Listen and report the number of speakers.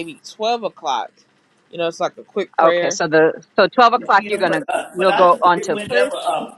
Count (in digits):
3